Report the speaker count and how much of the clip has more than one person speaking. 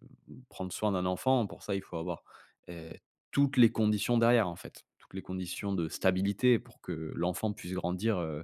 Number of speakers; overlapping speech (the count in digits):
1, no overlap